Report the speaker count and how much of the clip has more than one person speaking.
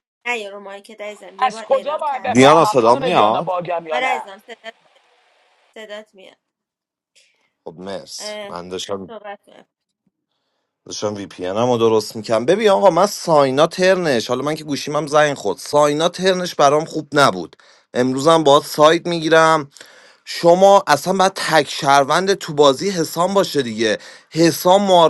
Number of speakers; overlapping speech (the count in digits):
3, about 10%